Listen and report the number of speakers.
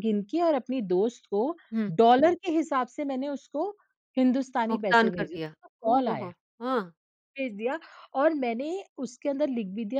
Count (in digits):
2